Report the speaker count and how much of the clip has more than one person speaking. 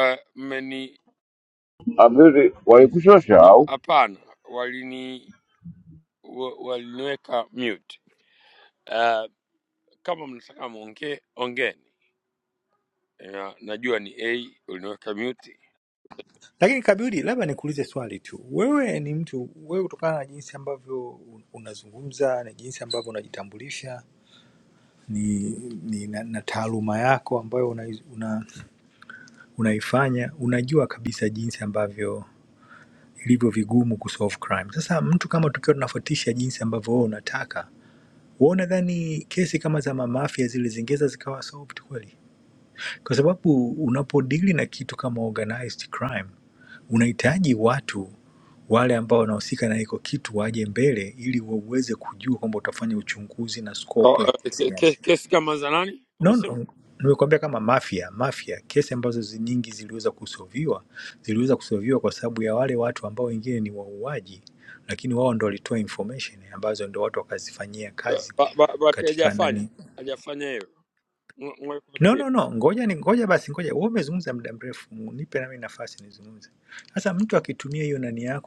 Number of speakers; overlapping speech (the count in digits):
3, about 3%